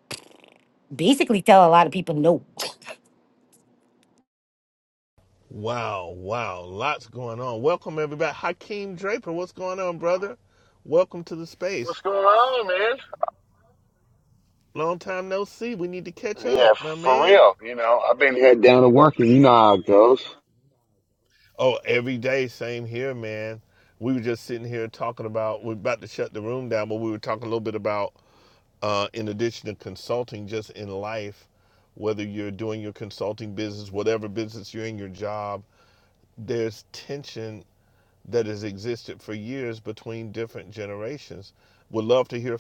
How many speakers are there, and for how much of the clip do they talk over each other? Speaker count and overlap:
three, about 2%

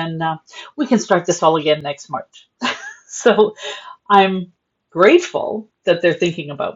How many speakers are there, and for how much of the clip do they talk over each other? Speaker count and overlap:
one, no overlap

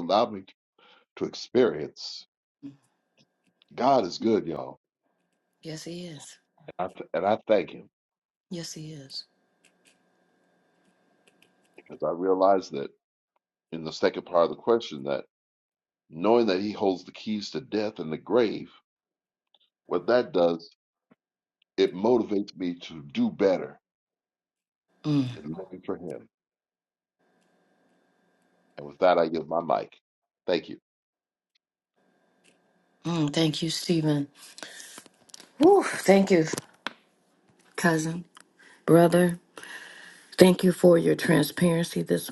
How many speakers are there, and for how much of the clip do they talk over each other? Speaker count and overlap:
two, no overlap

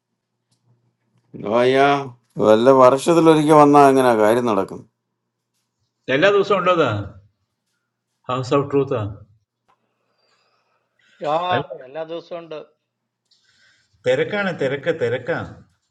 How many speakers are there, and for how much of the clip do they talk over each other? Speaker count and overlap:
three, about 1%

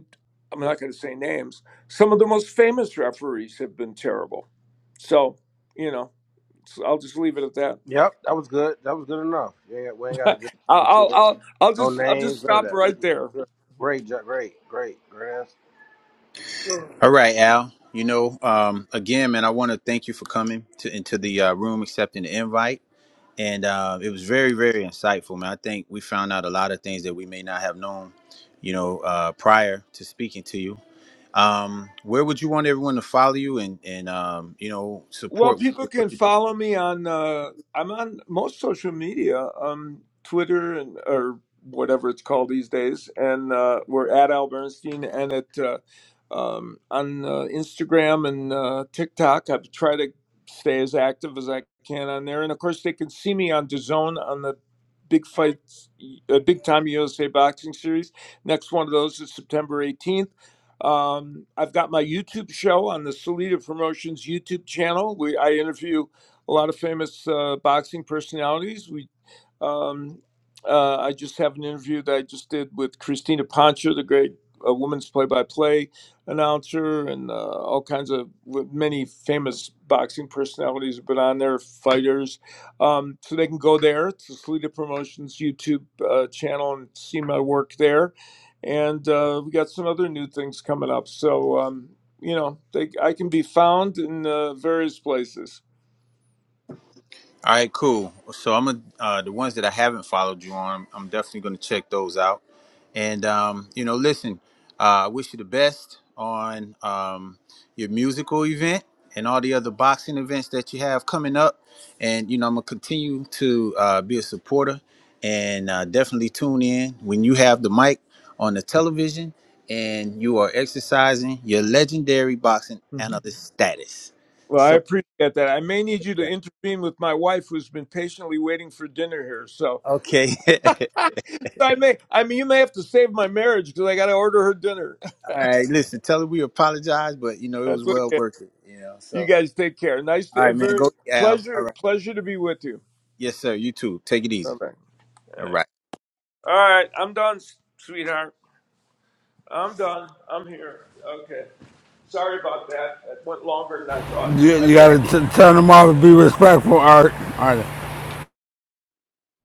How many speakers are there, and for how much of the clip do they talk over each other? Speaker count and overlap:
four, about 3%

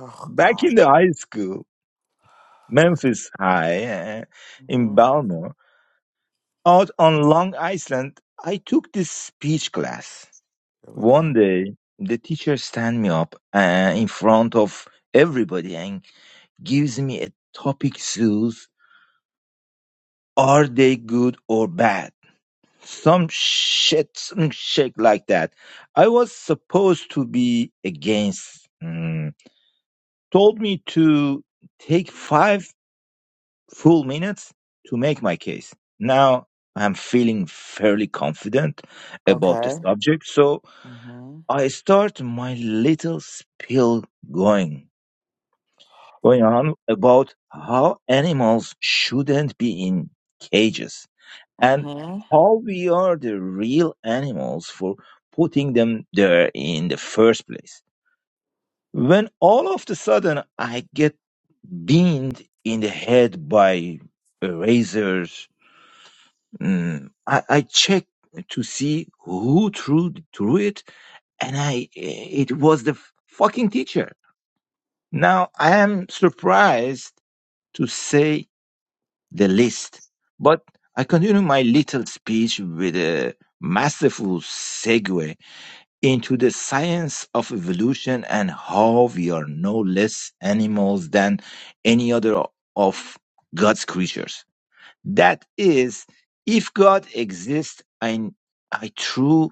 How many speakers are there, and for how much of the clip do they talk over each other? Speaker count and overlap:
two, about 1%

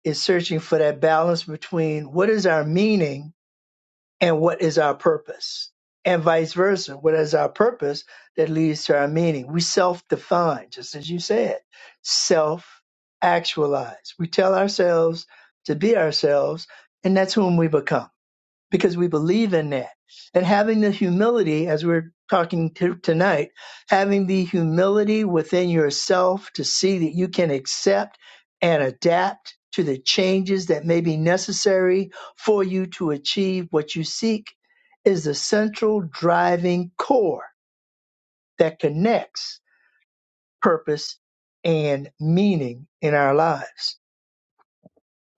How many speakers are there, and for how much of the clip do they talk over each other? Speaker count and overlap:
one, no overlap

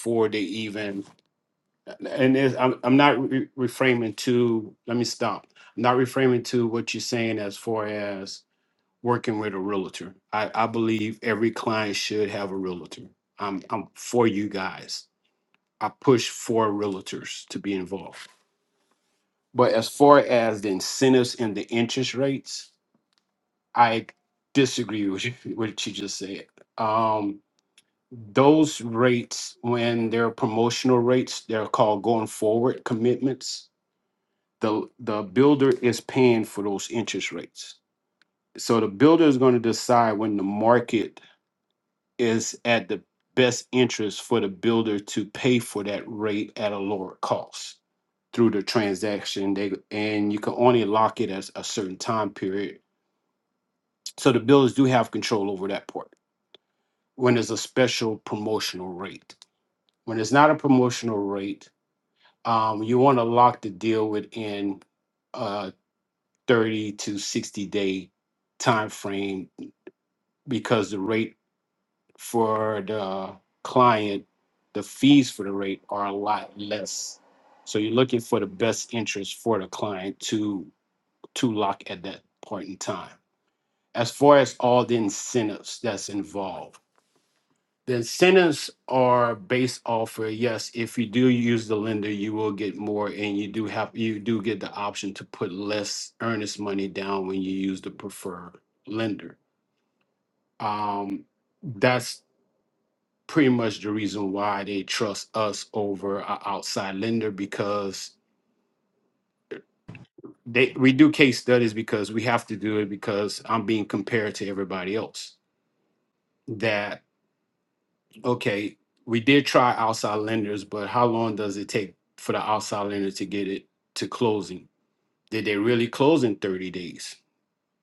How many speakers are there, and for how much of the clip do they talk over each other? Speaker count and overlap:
one, no overlap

